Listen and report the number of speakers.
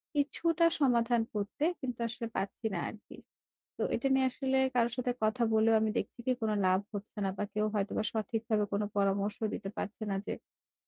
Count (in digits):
1